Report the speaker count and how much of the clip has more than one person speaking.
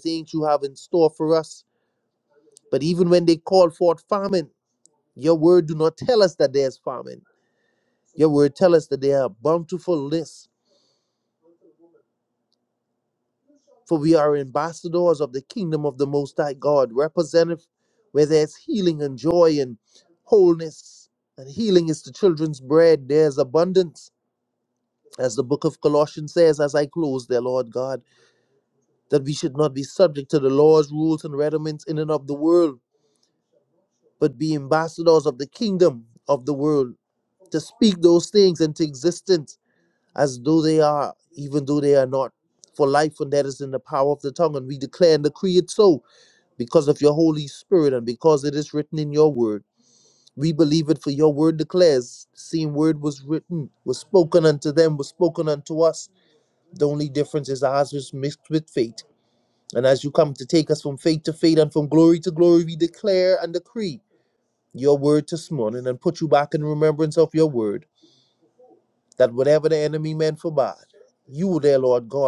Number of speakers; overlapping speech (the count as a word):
one, no overlap